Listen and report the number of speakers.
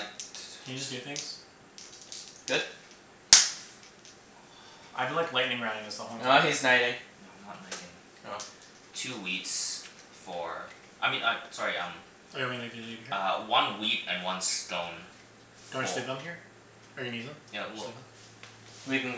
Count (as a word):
three